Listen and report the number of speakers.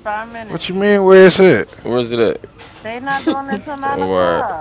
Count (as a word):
three